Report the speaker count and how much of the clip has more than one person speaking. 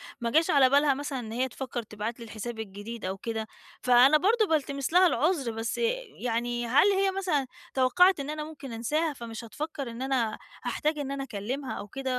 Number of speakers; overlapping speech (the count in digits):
1, no overlap